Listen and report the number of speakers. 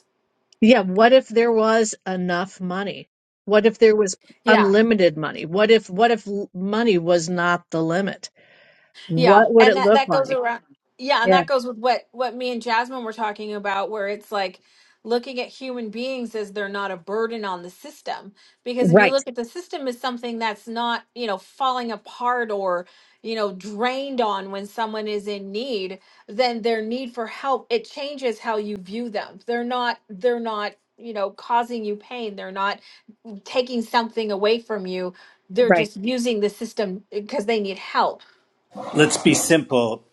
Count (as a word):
three